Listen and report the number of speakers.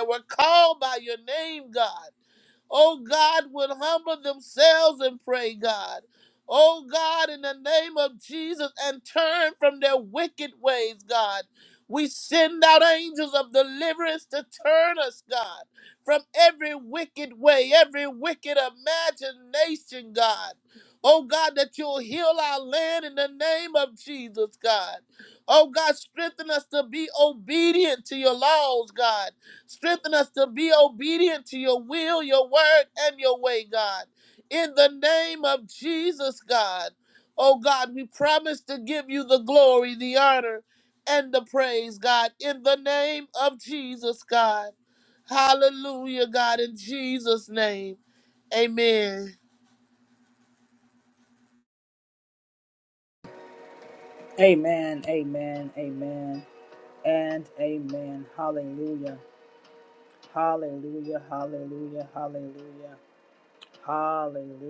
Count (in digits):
2